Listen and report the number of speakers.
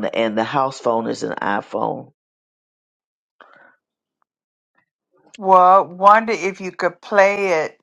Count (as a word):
two